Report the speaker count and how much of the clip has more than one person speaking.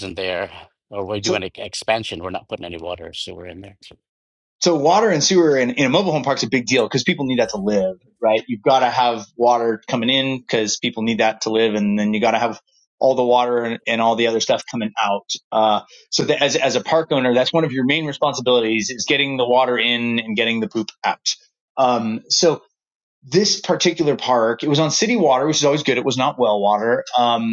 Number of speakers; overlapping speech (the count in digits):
2, about 1%